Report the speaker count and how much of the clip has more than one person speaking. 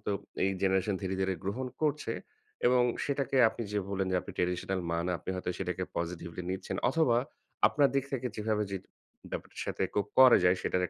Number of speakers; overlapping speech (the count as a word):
one, no overlap